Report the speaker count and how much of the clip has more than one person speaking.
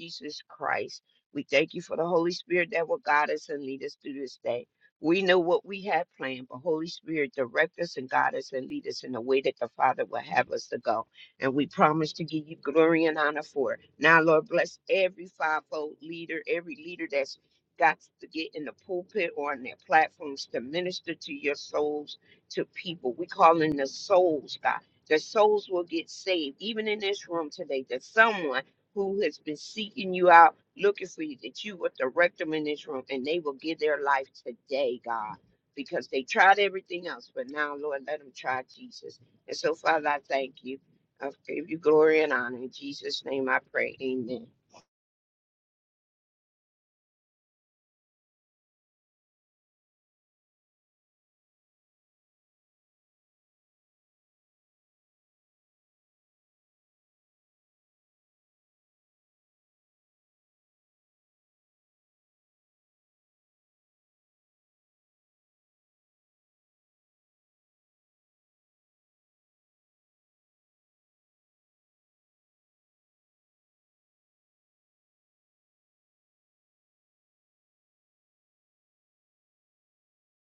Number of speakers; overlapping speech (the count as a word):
one, no overlap